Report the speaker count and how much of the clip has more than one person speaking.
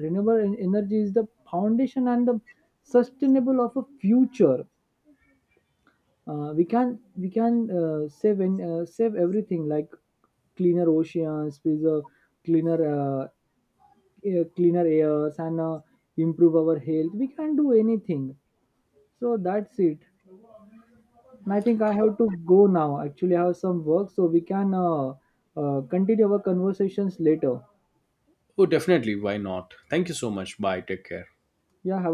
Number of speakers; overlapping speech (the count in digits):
2, no overlap